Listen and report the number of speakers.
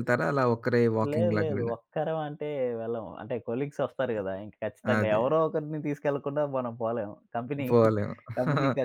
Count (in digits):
2